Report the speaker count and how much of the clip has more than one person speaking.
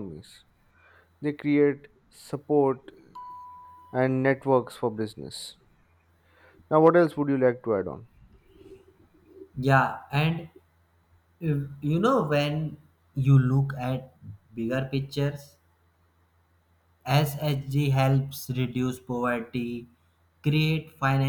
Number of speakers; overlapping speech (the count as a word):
two, no overlap